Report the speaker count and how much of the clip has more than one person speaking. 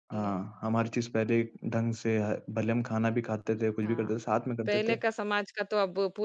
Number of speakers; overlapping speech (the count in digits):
2, about 13%